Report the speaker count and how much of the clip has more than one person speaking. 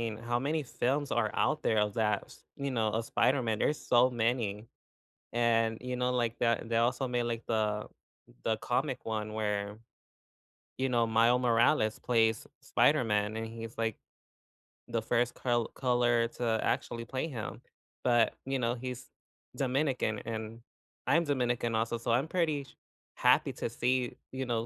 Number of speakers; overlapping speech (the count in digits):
1, no overlap